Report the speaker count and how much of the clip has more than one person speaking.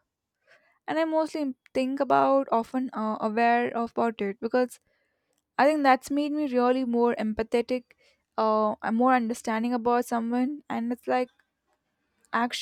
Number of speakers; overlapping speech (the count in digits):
1, no overlap